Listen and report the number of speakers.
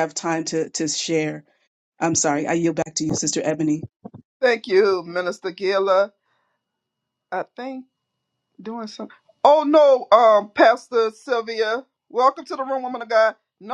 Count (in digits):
2